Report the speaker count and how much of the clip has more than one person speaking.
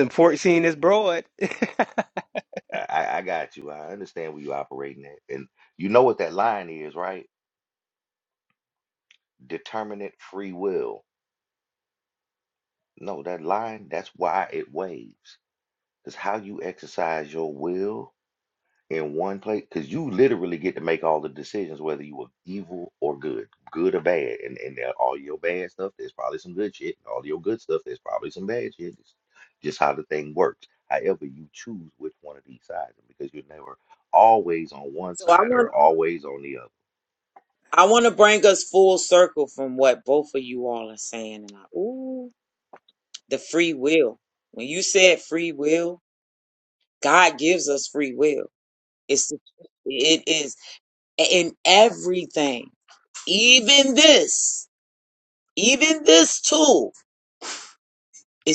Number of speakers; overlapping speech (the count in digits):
3, about 1%